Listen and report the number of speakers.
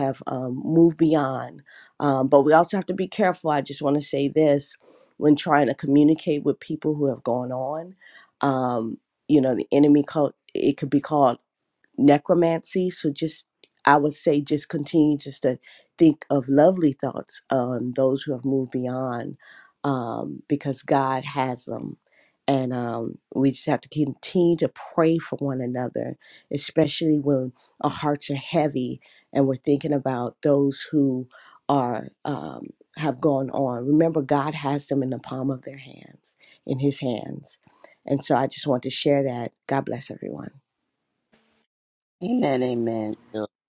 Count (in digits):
2